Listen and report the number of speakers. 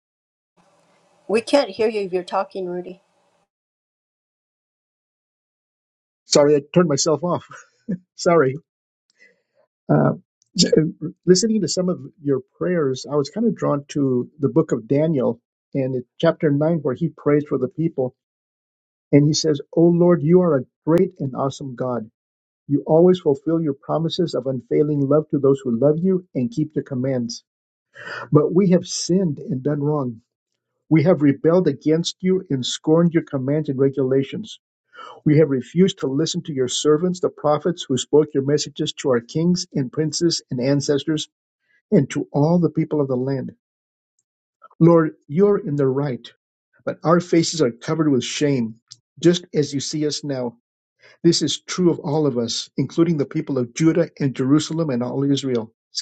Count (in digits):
2